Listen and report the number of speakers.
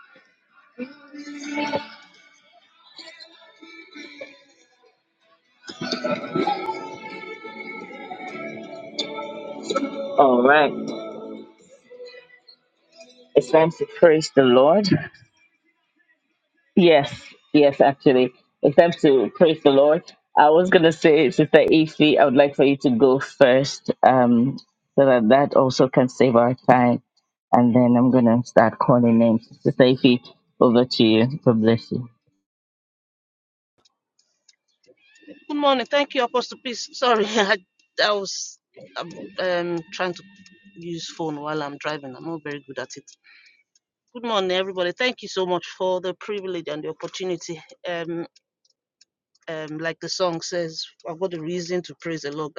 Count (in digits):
2